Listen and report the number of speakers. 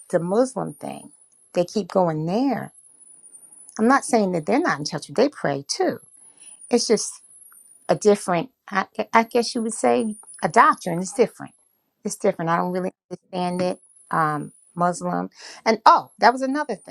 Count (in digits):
1